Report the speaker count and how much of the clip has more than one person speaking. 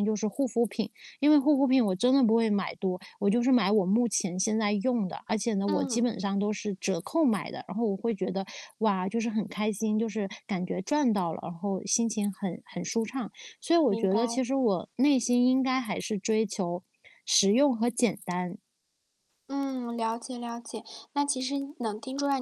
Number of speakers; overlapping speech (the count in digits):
2, about 4%